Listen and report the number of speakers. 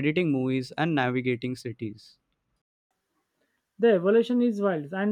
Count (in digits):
2